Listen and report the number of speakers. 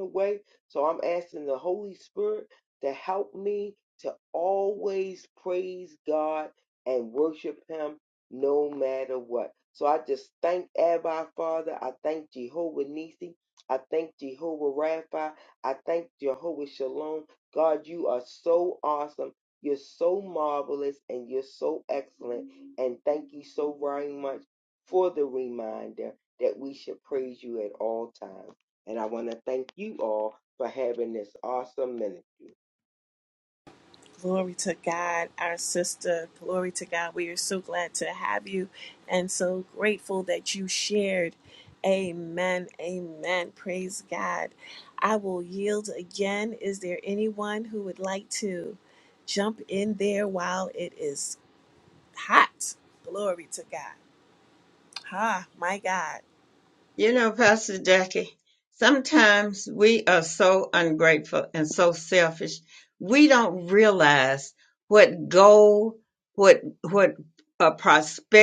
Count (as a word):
three